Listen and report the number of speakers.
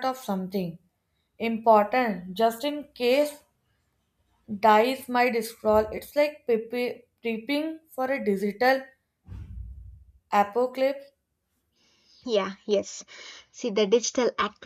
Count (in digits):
2